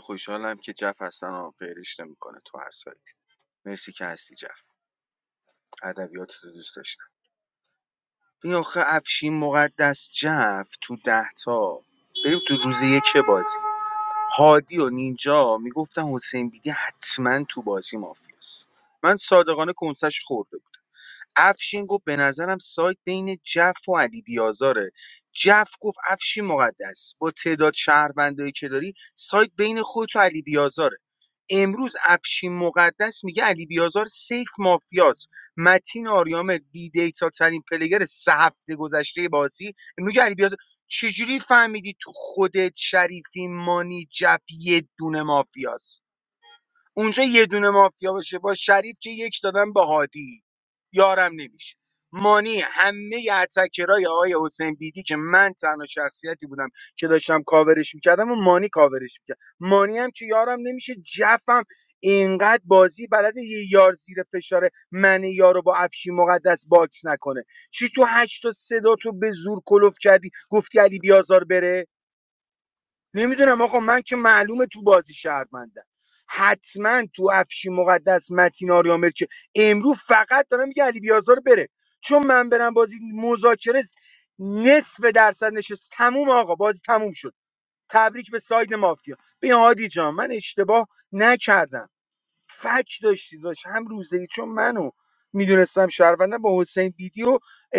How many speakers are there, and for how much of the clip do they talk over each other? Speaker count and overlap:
one, no overlap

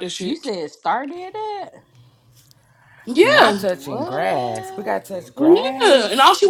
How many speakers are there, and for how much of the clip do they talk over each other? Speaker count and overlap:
three, about 36%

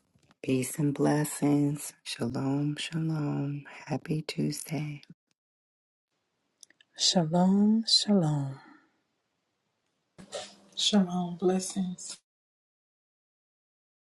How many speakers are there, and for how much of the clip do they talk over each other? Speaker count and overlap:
three, no overlap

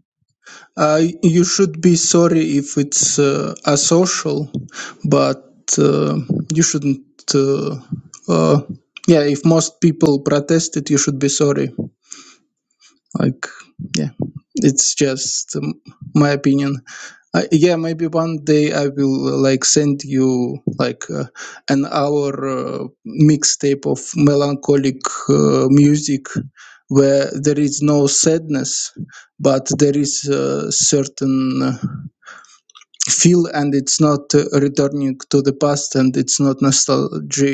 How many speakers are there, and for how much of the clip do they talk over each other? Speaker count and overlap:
one, no overlap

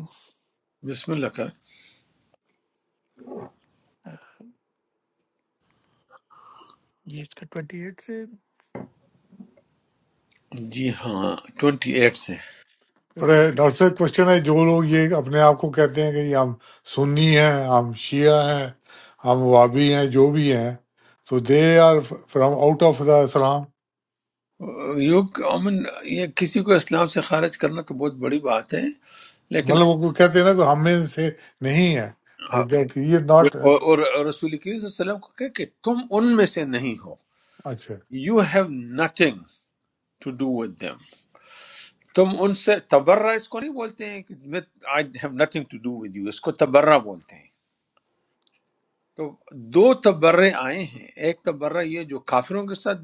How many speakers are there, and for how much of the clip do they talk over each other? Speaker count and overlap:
three, about 1%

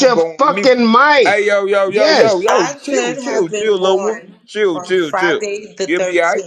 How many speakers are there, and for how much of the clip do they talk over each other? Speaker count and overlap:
three, about 65%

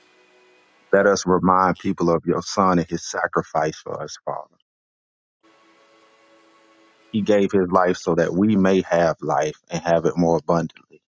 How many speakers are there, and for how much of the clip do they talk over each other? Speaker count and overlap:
one, no overlap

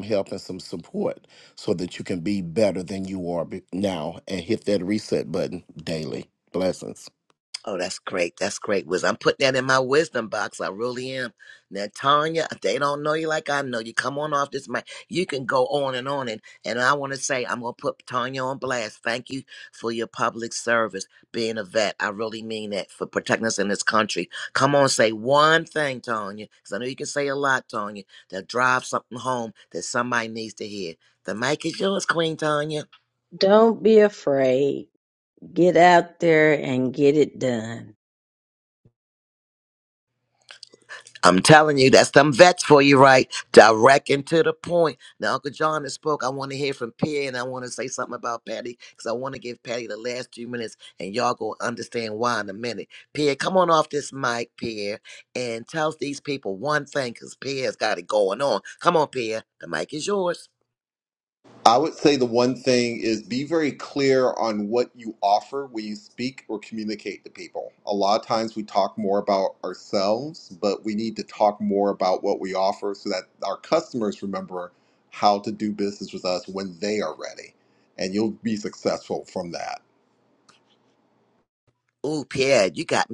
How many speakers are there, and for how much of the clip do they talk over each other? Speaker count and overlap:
four, no overlap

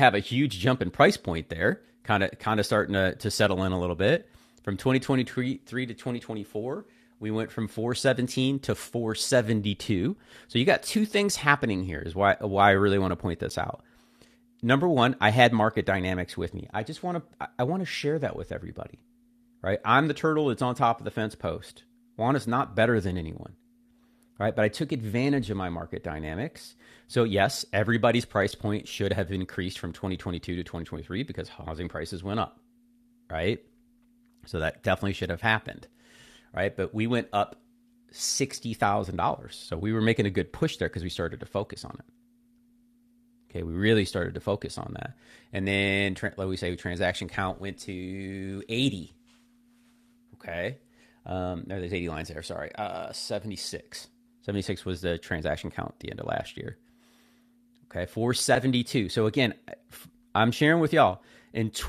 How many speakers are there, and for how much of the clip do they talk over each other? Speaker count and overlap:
one, no overlap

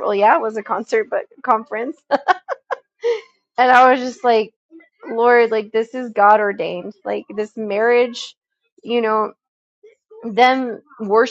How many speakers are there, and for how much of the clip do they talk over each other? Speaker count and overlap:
one, no overlap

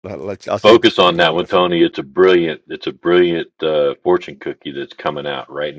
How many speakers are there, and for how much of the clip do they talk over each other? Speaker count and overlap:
two, about 17%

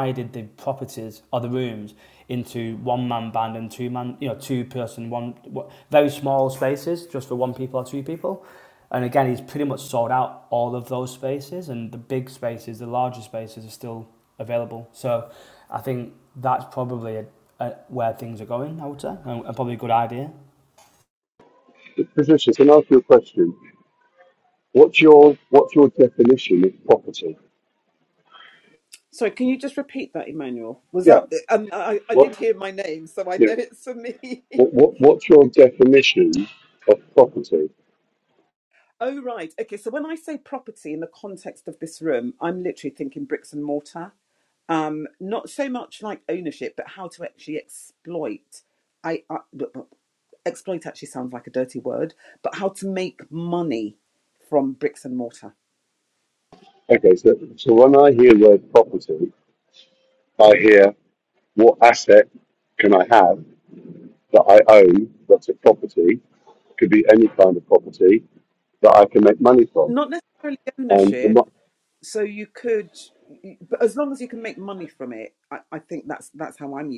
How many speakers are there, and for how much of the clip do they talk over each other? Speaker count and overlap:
three, about 1%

